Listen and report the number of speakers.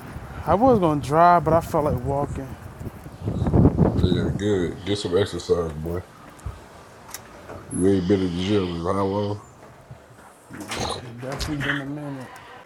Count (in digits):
2